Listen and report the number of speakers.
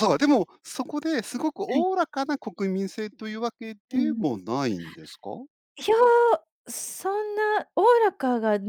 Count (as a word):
two